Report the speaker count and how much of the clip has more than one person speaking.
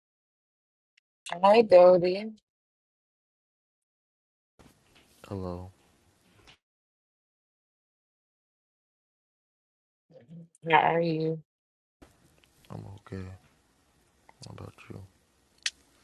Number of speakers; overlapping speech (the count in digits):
2, no overlap